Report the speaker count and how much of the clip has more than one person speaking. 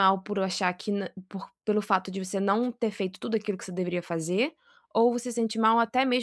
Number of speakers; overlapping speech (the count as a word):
one, no overlap